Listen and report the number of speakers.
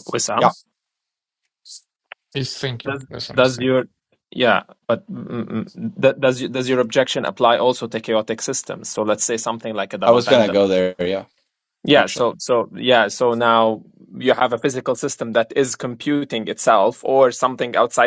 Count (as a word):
three